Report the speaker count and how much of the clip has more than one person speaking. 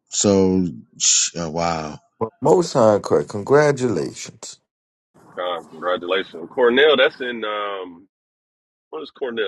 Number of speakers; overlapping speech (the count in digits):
3, no overlap